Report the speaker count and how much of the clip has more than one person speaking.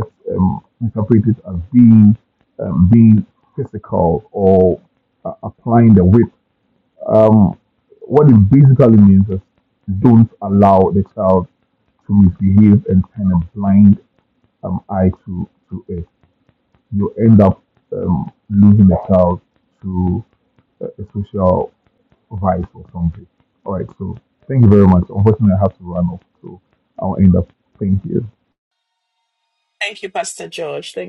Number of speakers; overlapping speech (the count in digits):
2, no overlap